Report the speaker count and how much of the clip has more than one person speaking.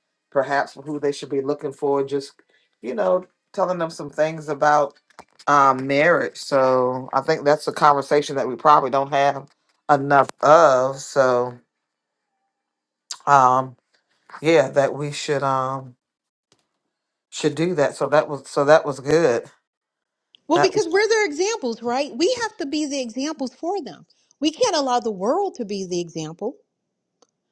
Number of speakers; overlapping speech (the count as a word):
two, about 1%